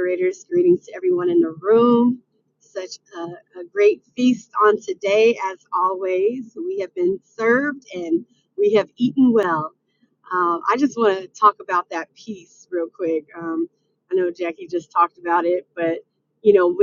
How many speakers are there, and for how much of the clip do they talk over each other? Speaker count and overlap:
1, no overlap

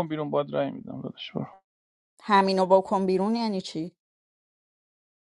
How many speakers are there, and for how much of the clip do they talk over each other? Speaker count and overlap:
2, no overlap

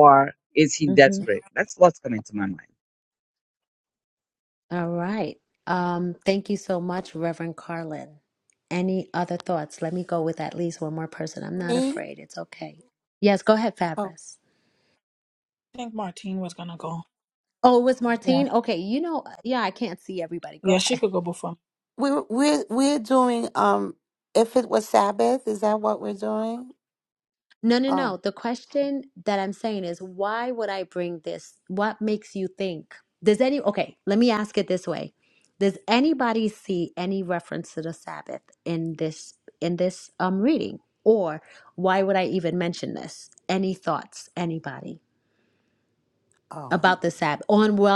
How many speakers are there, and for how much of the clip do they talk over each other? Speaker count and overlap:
4, about 4%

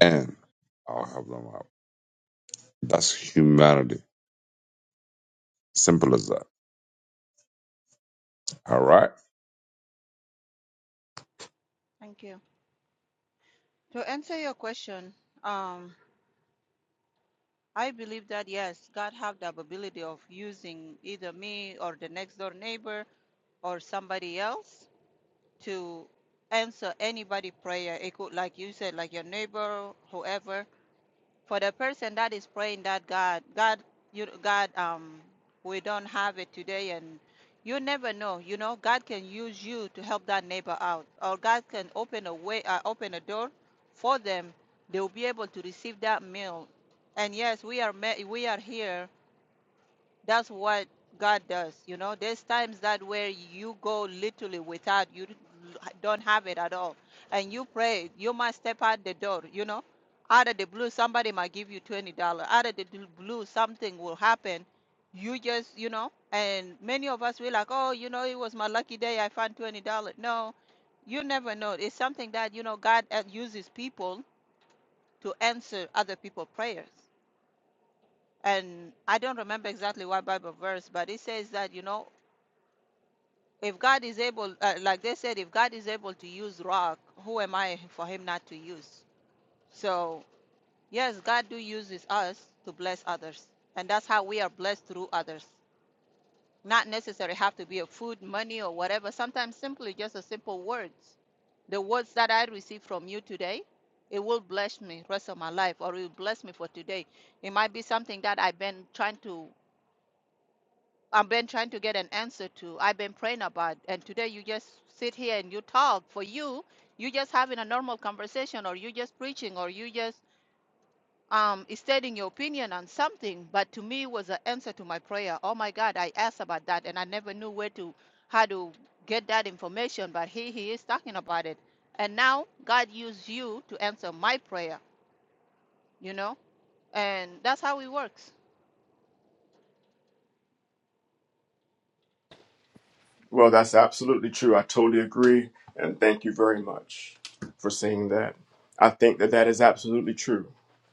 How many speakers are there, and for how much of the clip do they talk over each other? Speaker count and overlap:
3, no overlap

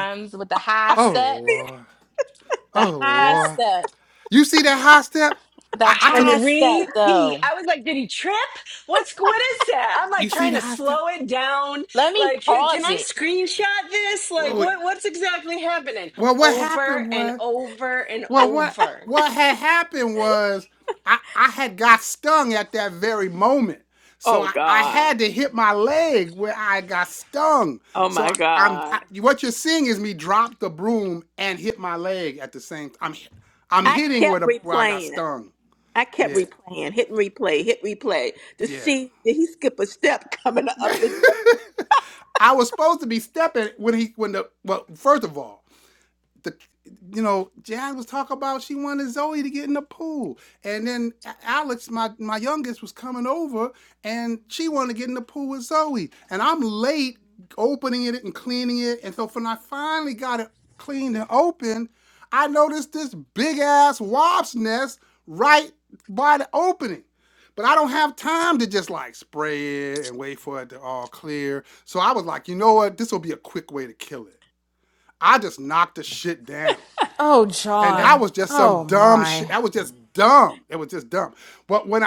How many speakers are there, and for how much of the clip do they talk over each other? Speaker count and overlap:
5, about 14%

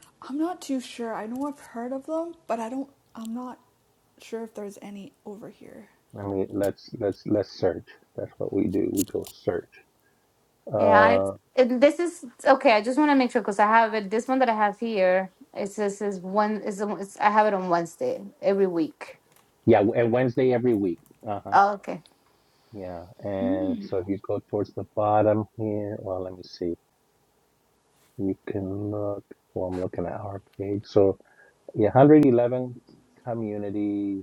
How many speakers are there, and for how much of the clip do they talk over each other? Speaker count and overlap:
3, about 1%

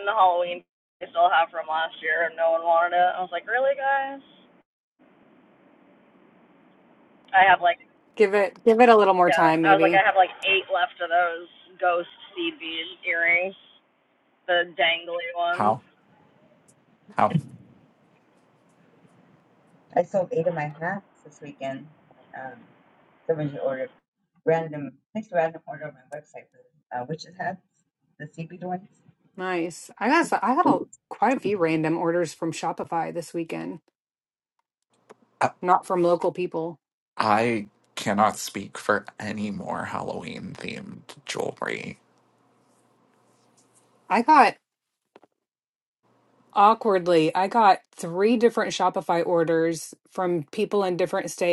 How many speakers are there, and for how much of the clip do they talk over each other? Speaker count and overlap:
4, about 2%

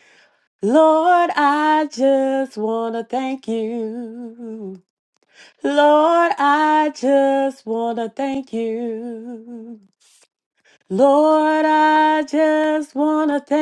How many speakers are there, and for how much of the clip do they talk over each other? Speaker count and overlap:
1, no overlap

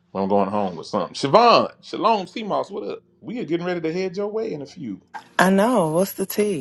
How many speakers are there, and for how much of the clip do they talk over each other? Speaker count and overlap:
2, no overlap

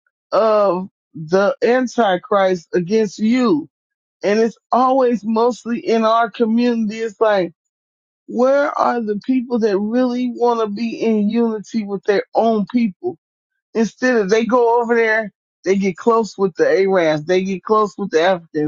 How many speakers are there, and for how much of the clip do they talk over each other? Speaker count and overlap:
1, no overlap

